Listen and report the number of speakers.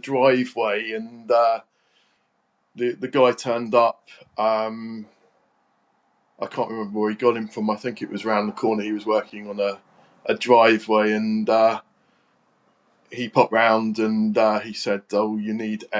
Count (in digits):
1